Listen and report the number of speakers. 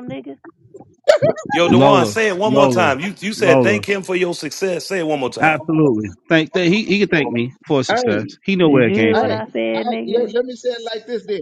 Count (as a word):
four